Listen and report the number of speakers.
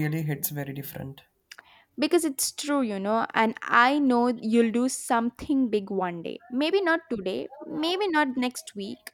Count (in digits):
2